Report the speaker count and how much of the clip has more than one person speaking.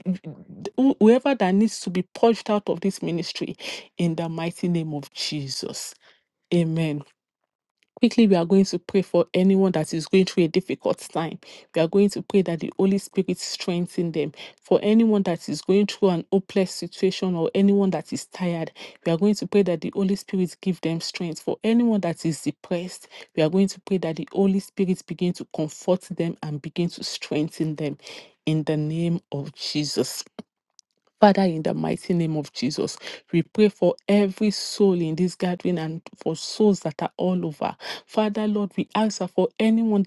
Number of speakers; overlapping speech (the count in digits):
1, no overlap